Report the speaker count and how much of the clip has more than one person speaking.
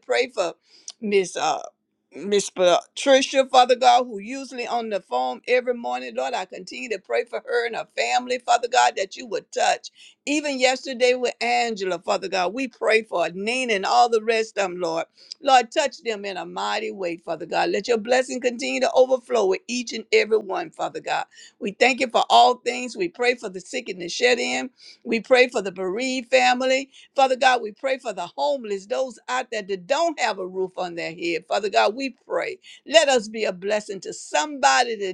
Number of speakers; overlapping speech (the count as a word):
one, no overlap